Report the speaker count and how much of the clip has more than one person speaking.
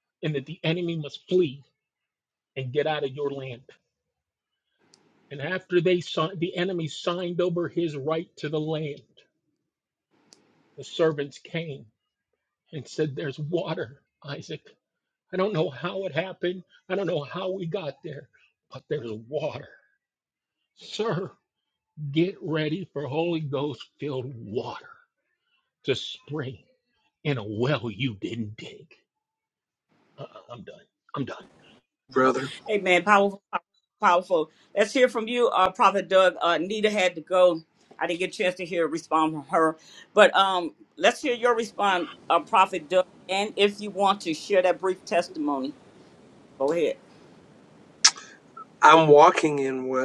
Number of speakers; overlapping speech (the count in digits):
3, no overlap